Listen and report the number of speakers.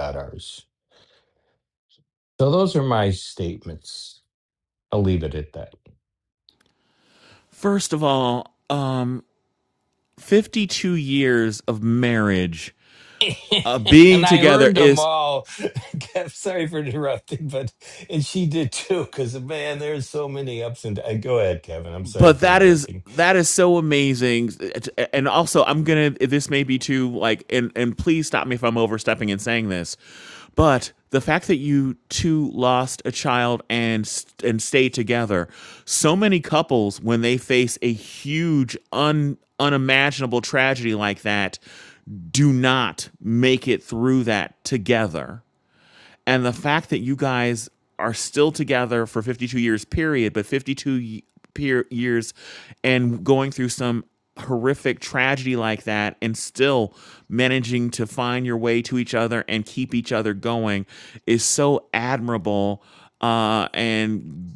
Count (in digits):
2